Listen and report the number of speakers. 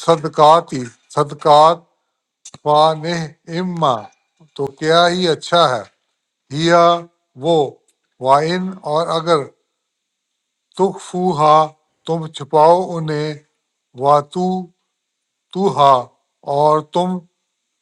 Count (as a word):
one